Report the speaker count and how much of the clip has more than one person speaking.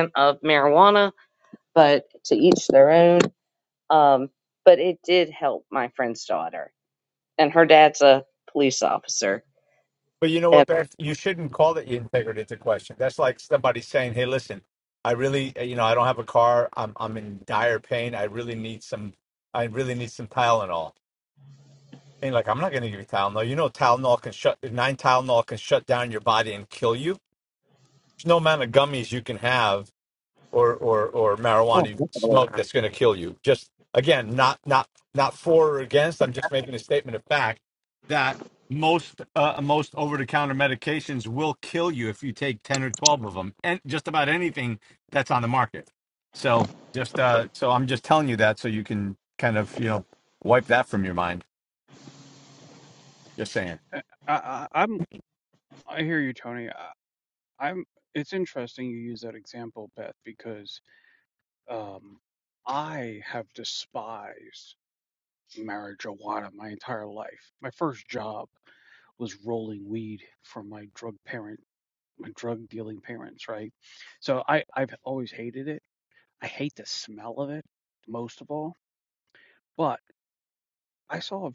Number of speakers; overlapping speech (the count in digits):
3, under 1%